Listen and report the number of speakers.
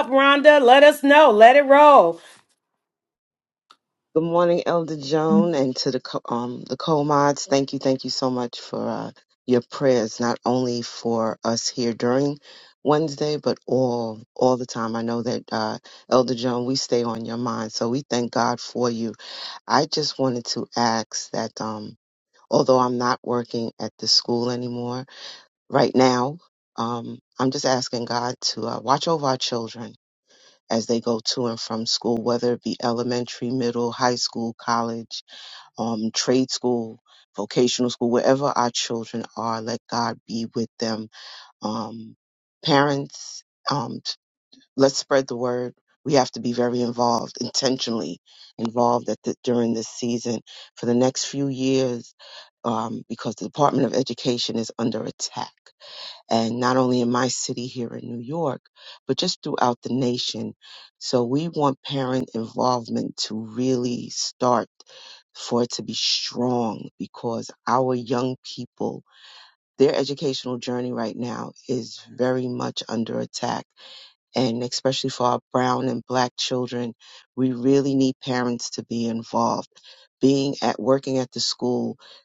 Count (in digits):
2